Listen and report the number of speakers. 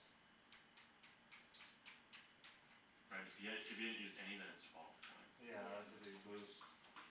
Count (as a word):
two